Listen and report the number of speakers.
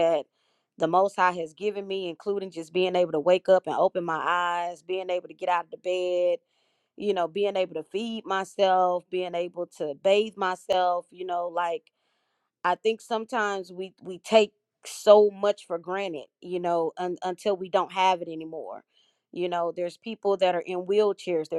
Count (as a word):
one